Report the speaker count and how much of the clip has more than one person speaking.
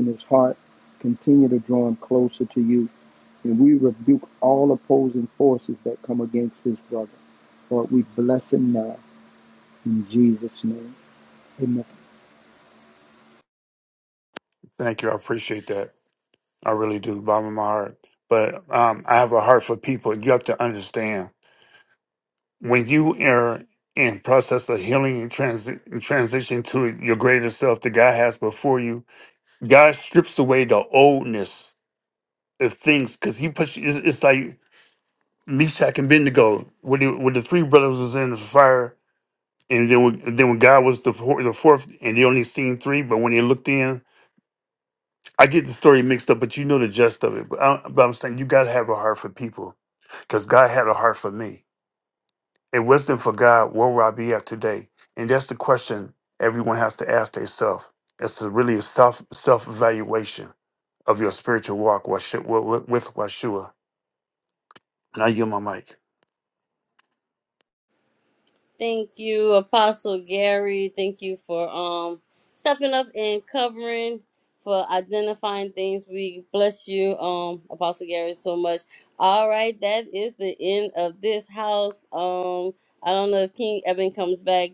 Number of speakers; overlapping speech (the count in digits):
3, no overlap